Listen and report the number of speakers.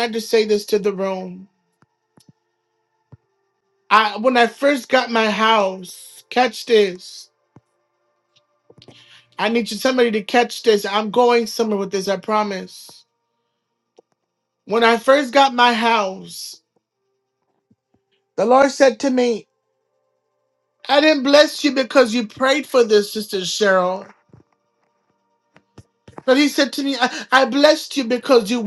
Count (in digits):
1